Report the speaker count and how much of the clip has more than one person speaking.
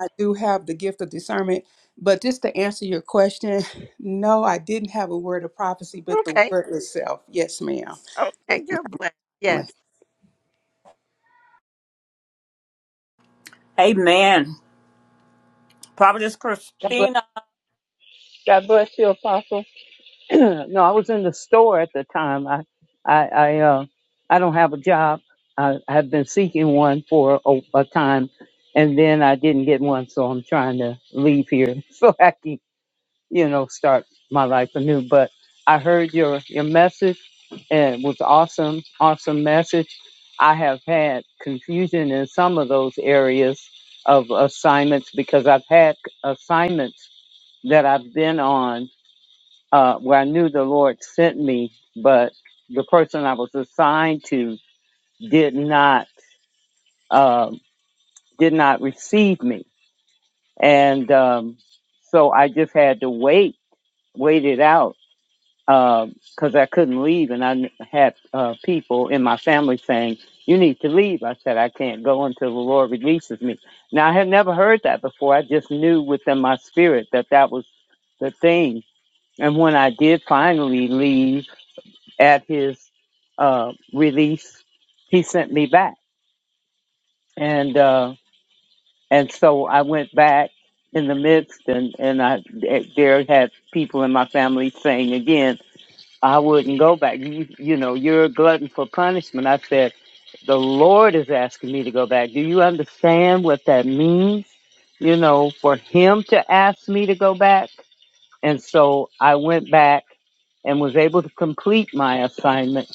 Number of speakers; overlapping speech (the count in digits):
4, about 1%